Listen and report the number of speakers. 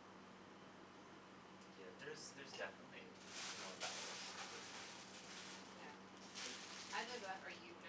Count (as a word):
two